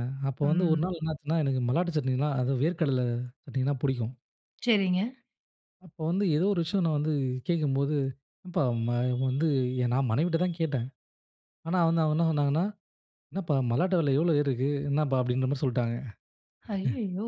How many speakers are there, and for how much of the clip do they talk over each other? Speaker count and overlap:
2, about 2%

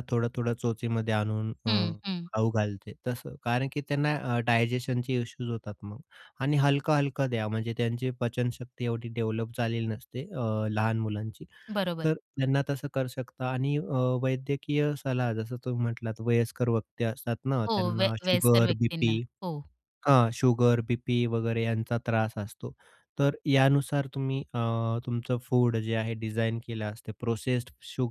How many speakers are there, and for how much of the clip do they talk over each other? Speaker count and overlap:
2, about 6%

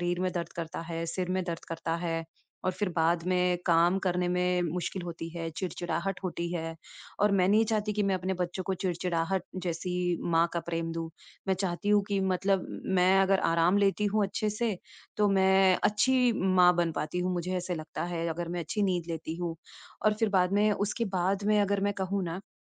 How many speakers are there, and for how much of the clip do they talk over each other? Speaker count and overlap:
1, no overlap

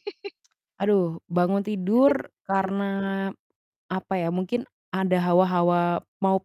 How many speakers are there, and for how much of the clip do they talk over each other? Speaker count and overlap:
1, no overlap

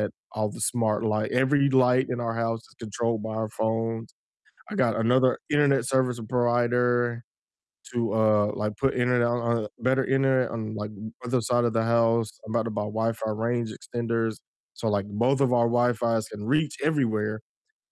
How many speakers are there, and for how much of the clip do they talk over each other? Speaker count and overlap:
1, no overlap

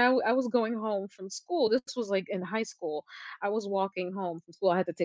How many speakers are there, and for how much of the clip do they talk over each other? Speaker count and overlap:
1, no overlap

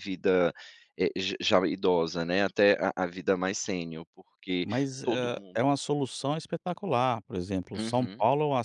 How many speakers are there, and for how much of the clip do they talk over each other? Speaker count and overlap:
2, about 14%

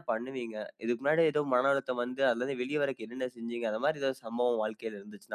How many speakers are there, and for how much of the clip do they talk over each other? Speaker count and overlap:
1, no overlap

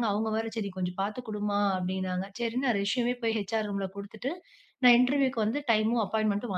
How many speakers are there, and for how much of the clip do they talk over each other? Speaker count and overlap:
1, no overlap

